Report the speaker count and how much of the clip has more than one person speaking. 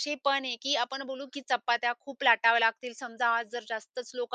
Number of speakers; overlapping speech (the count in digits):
1, no overlap